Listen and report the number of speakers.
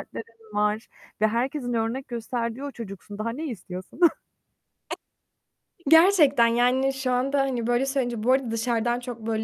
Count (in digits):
2